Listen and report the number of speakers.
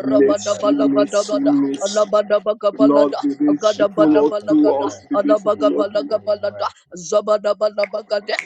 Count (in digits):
3